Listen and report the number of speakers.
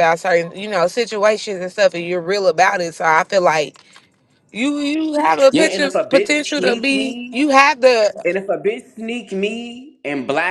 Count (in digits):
2